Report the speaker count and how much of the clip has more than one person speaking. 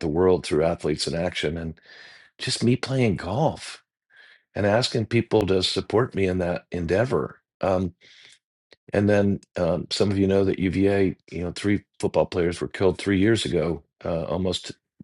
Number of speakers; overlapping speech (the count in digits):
1, no overlap